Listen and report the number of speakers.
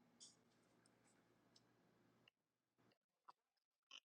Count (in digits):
0